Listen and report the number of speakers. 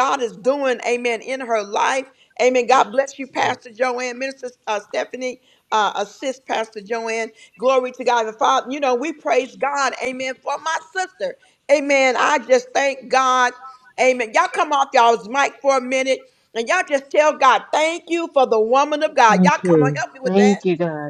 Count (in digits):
2